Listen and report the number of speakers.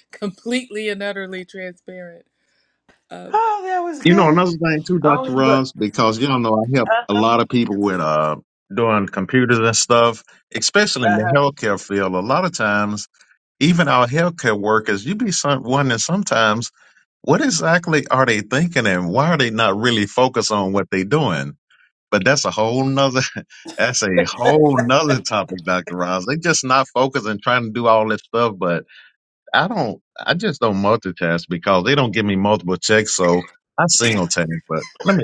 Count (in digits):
3